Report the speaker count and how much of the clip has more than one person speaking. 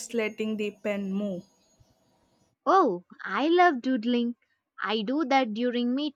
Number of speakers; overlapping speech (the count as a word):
two, no overlap